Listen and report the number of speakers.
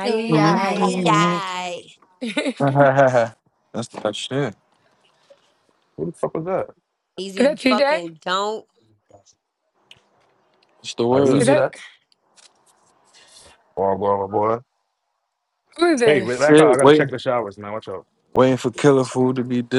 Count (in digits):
4